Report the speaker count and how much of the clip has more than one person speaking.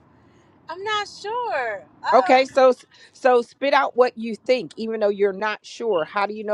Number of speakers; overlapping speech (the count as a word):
two, about 6%